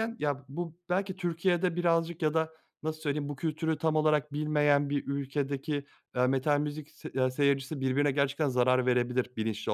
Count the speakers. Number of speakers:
one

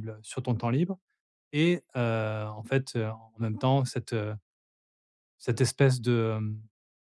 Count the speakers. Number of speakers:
one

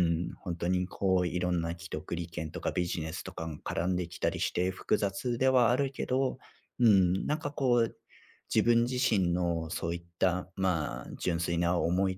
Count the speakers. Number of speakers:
one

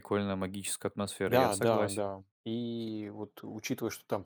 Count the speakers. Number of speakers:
two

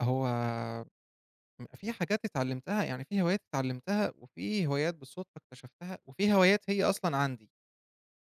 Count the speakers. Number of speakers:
one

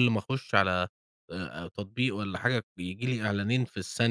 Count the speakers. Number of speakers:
one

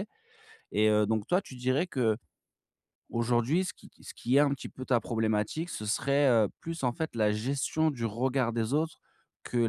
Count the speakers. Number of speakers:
one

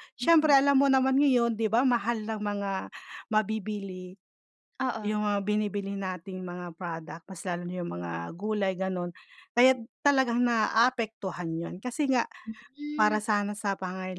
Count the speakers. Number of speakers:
two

